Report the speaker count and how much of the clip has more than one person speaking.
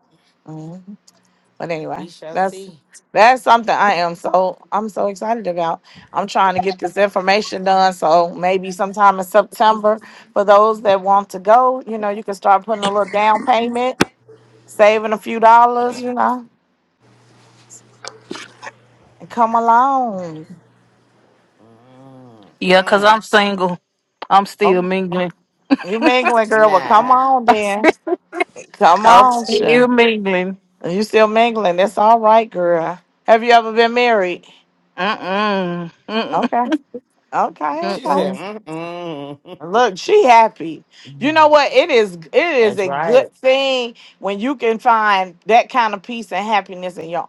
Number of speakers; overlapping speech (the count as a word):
three, about 8%